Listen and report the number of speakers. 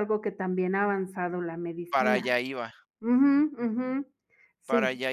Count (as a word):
two